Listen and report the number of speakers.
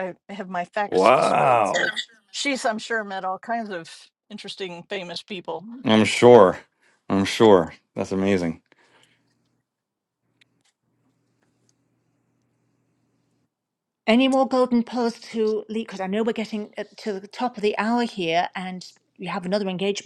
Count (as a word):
three